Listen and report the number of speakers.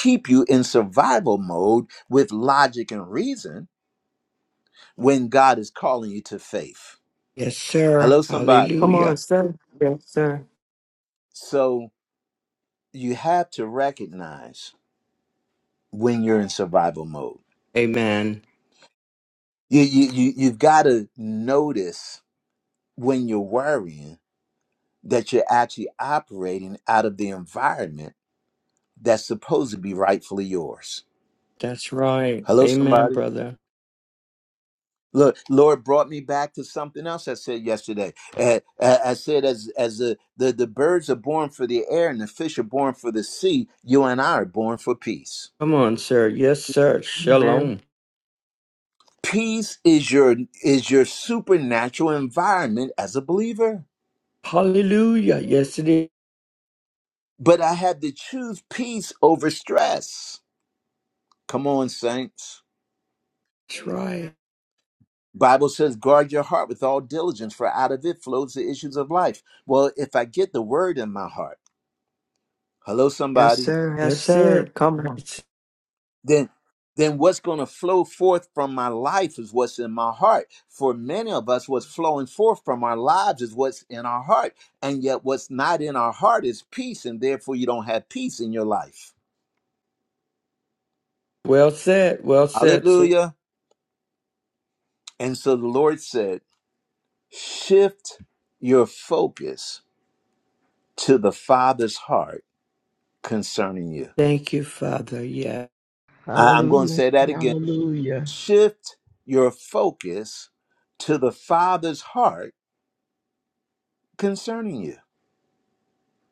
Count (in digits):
4